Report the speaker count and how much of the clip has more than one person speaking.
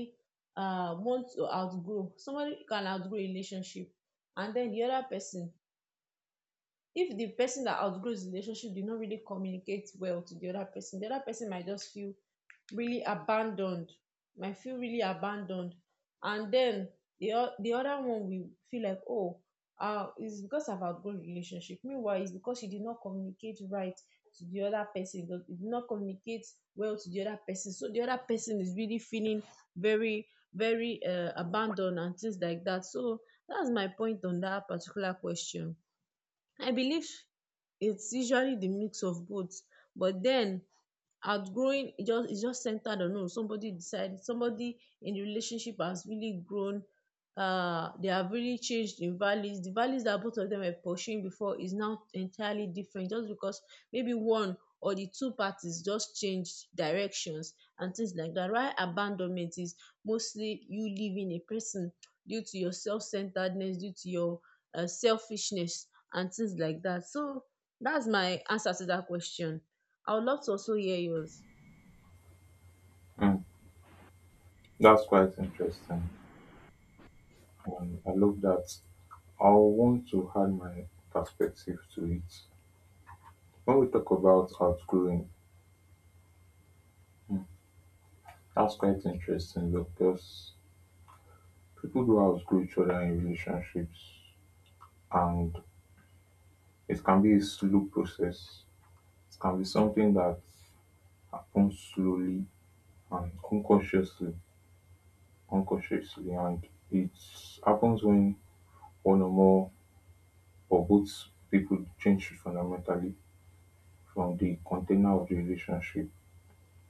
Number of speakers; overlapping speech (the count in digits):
2, no overlap